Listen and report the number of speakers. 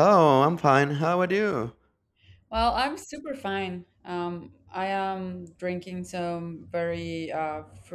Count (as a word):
two